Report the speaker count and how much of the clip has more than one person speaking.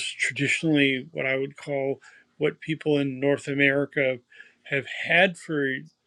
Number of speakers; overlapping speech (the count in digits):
1, no overlap